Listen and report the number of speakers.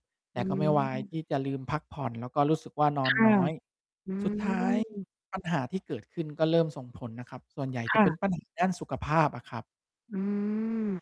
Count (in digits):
2